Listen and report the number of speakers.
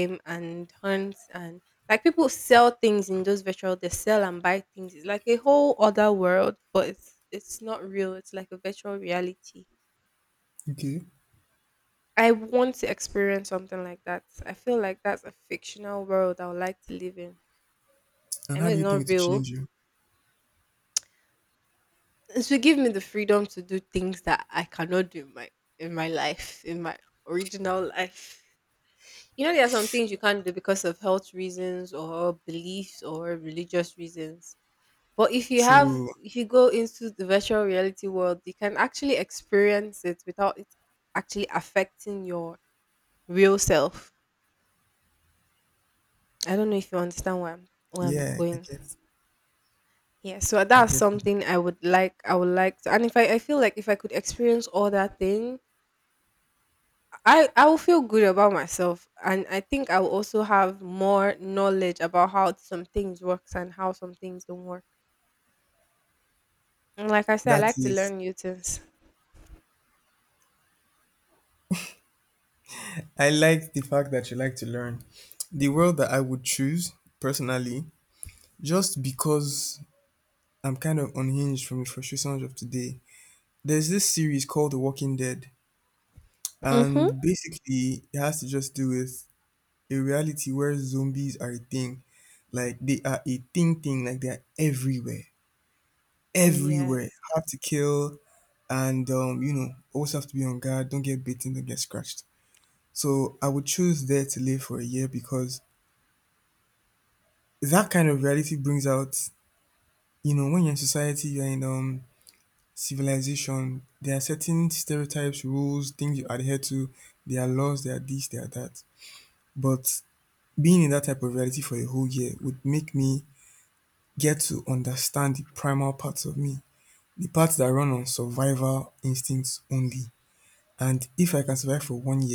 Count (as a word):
two